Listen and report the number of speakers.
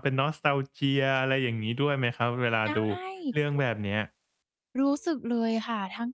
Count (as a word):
two